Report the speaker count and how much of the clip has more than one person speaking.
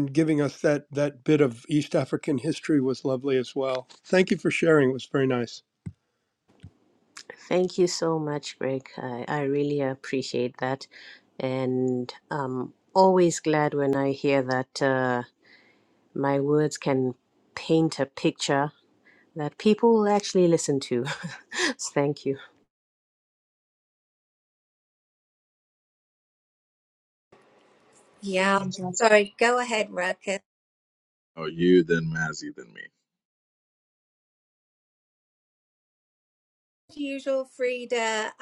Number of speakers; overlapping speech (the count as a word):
four, no overlap